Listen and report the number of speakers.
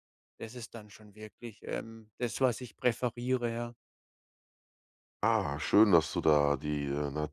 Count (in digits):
2